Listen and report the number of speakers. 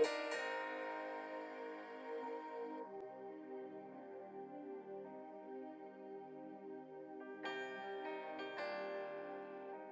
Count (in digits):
0